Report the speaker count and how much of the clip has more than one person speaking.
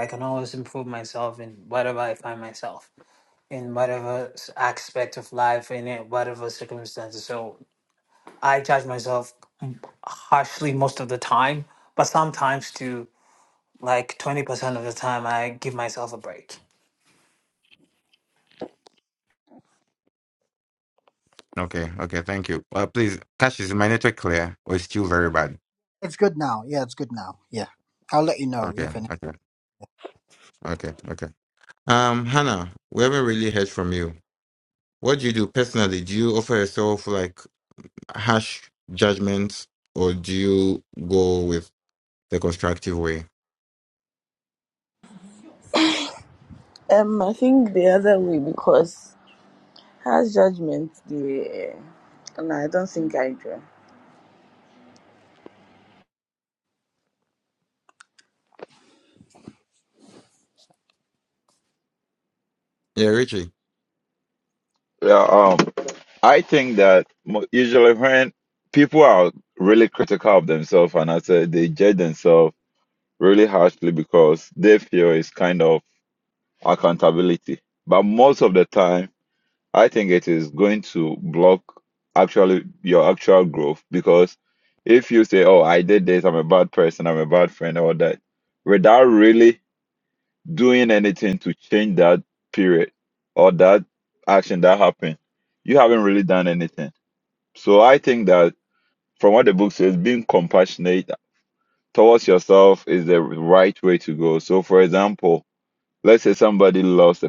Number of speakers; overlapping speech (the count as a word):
five, under 1%